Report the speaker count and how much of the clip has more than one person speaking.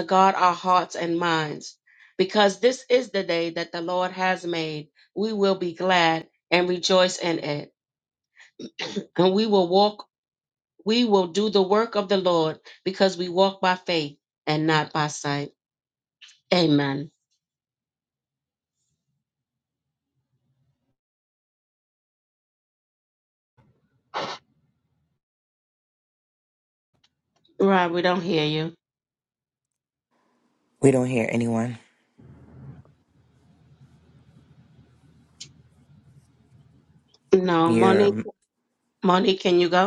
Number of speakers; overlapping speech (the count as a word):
two, about 1%